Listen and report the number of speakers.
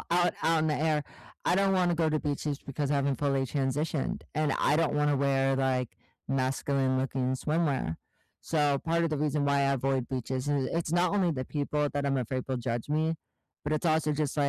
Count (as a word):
one